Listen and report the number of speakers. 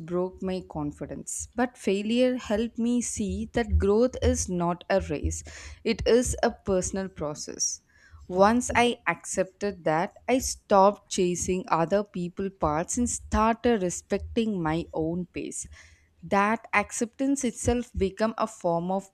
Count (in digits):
1